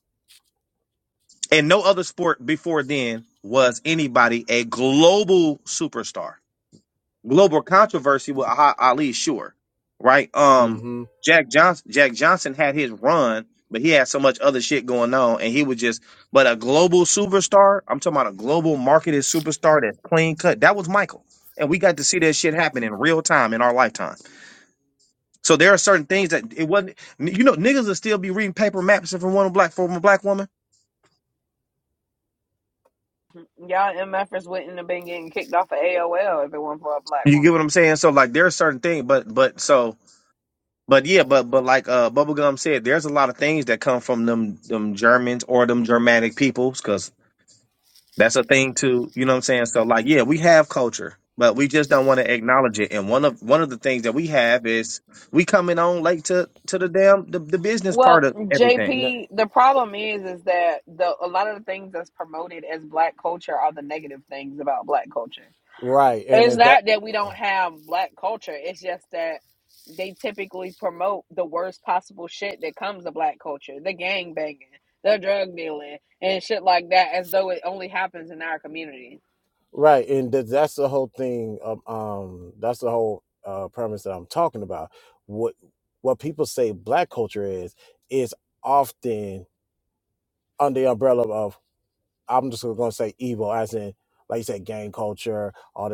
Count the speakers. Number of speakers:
3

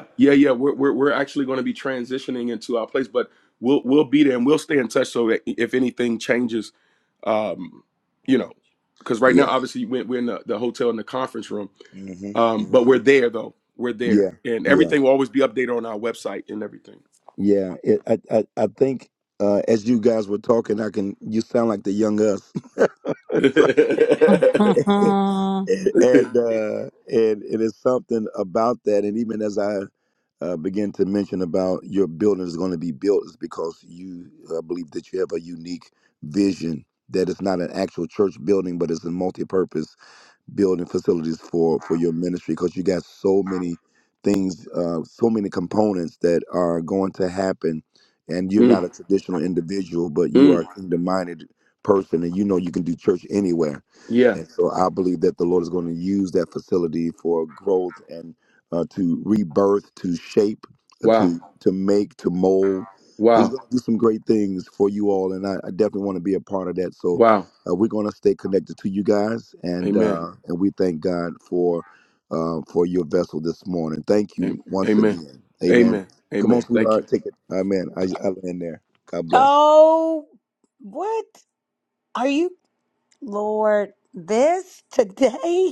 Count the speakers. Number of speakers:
3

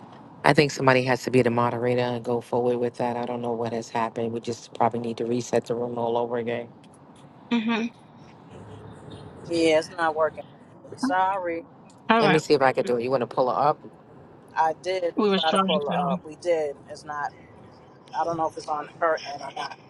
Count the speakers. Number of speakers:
3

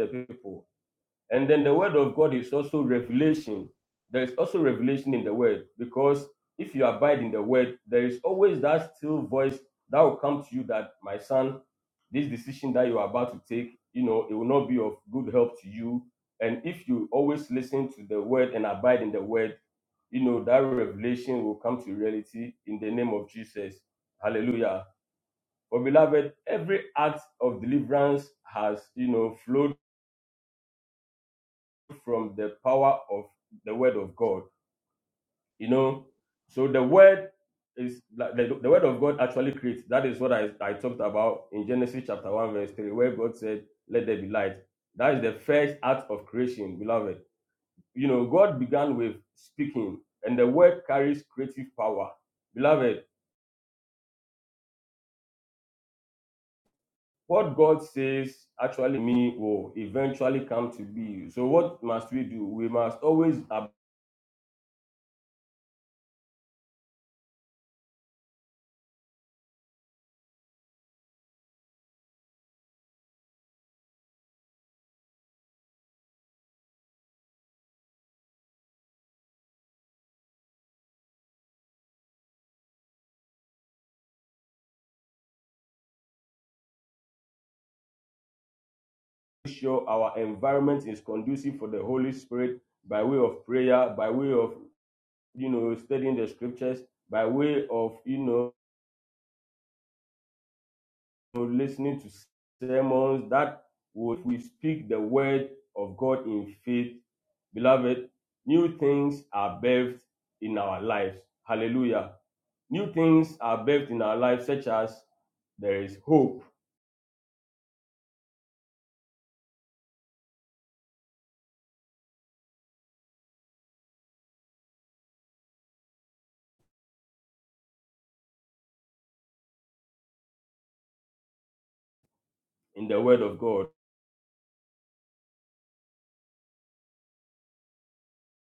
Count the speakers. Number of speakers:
1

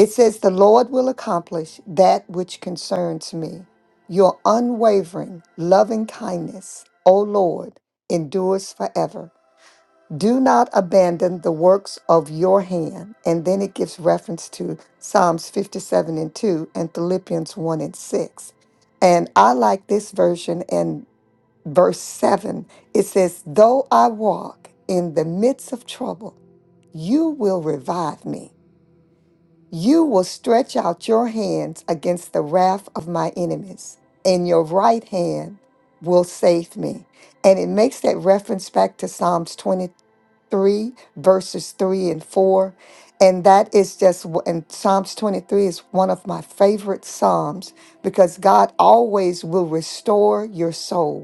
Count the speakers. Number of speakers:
1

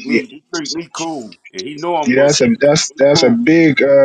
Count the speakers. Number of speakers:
2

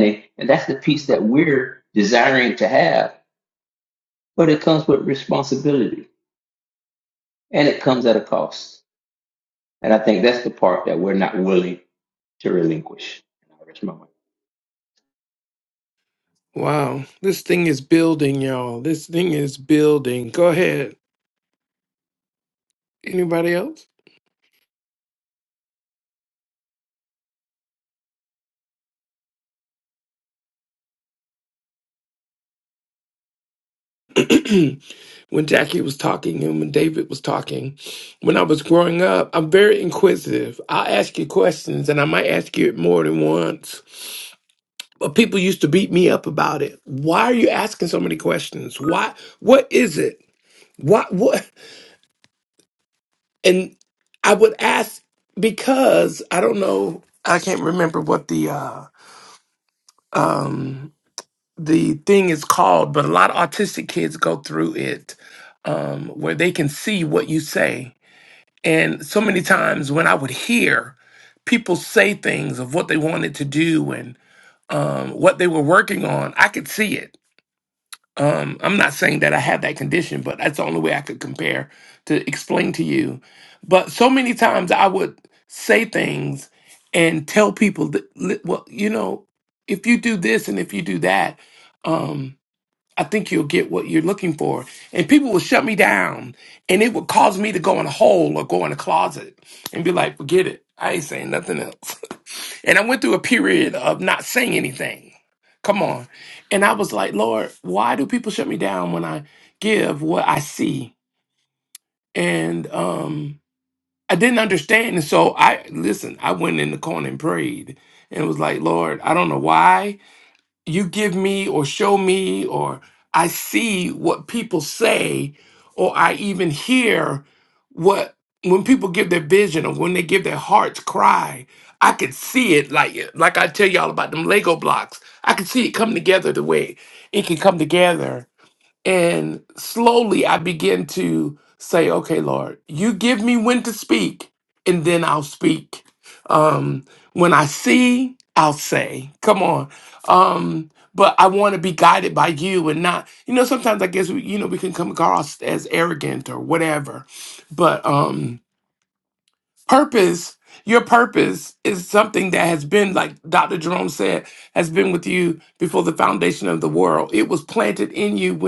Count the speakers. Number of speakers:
2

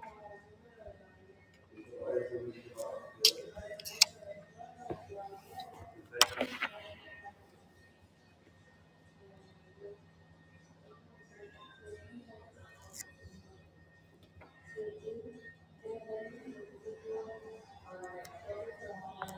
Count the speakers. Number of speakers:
0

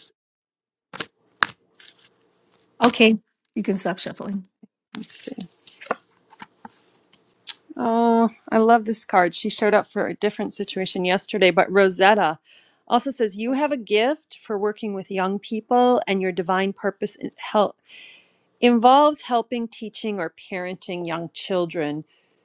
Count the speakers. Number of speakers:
2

